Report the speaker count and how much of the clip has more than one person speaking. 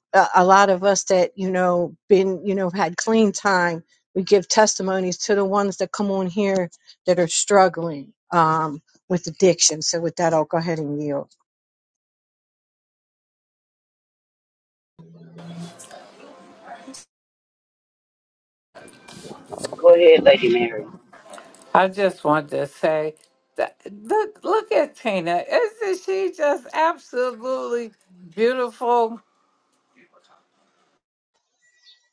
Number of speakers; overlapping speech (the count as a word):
three, no overlap